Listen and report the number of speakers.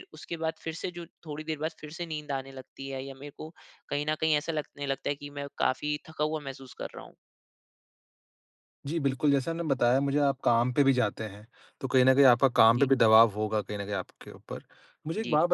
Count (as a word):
two